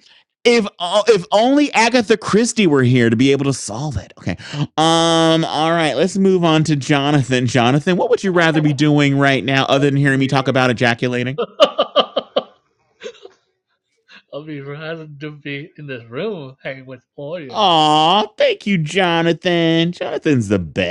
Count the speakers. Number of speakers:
two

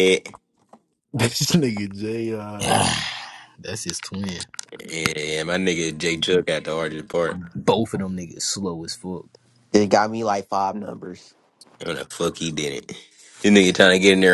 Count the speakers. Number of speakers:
four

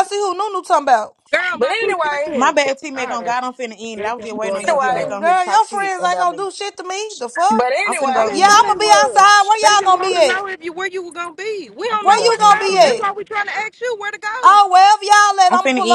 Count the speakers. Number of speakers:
four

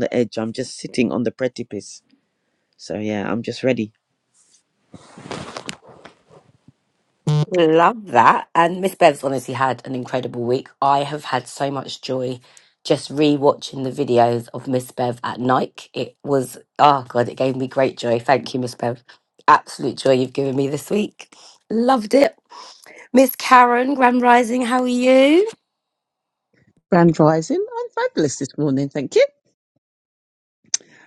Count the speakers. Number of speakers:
three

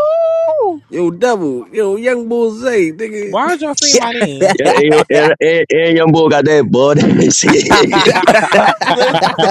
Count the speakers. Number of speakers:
four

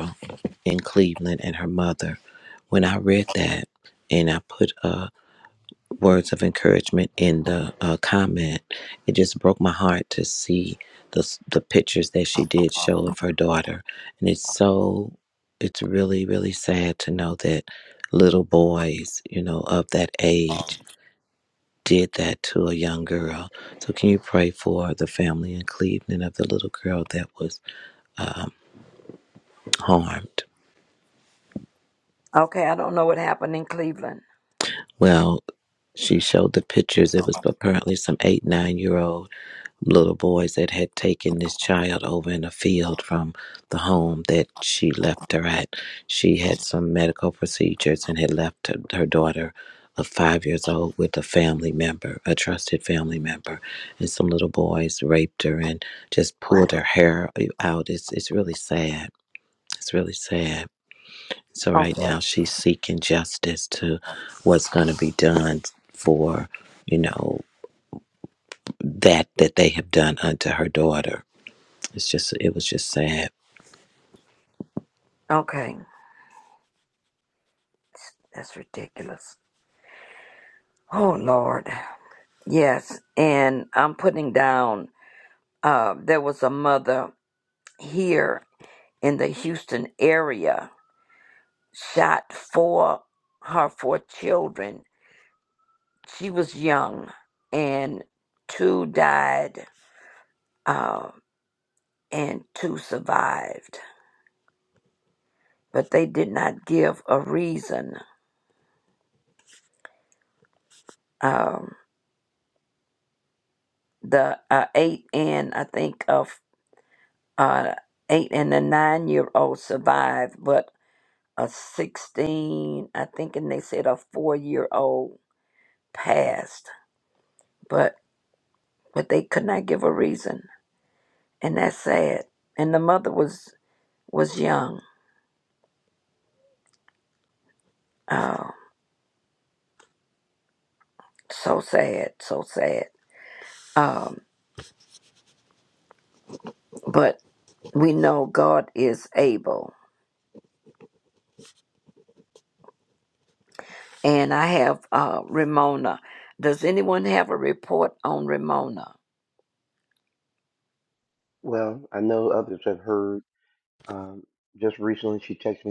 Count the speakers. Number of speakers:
three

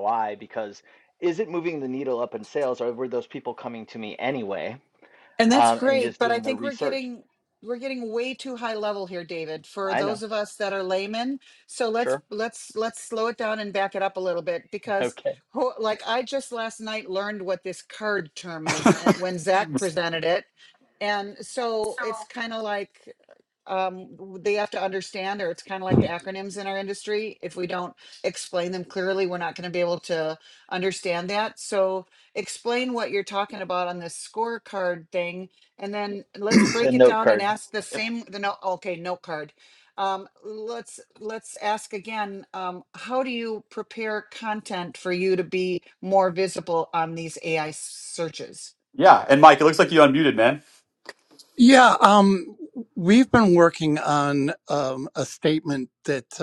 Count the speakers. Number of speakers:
four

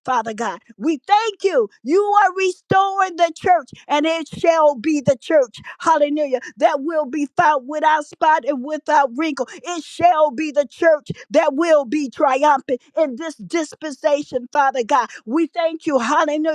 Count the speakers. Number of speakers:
one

